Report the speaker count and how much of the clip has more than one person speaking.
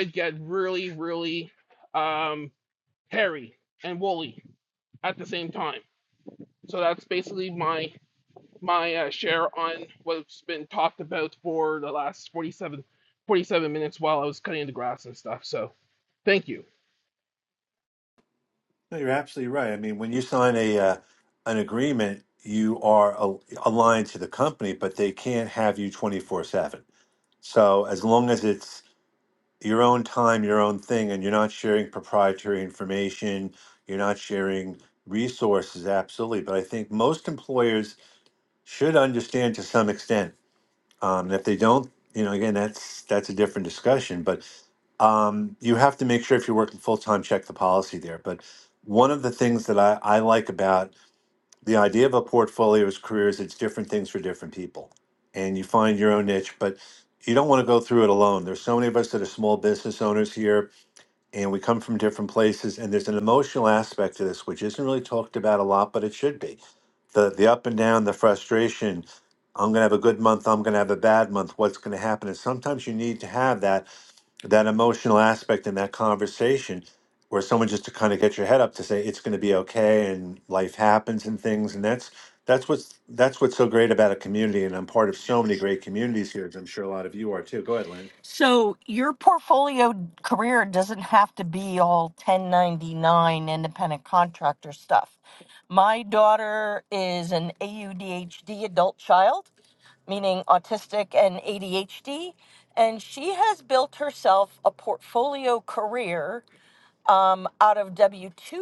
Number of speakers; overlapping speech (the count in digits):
3, no overlap